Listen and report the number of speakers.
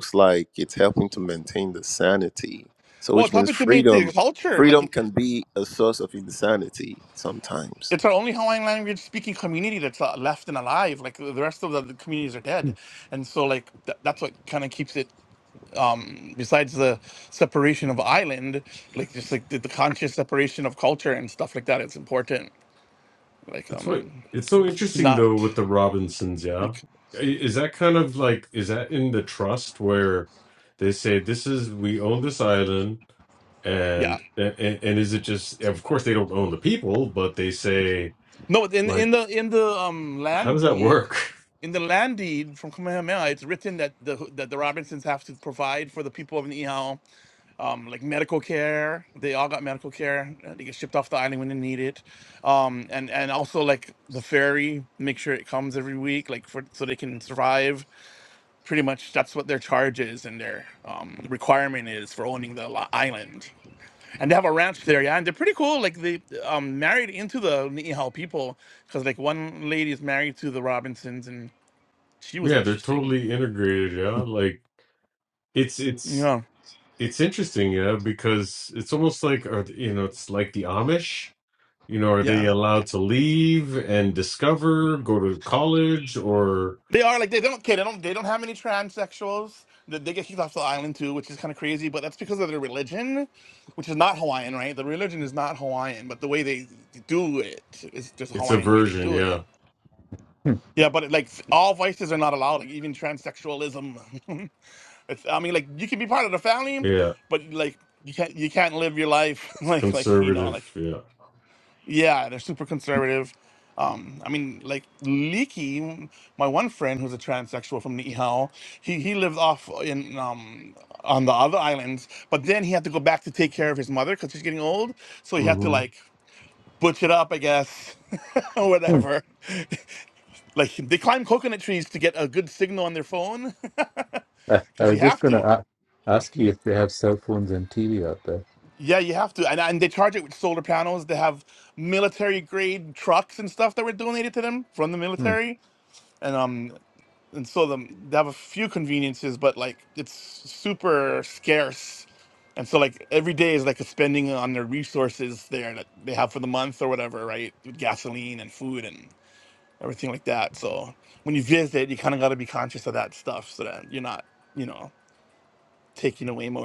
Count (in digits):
4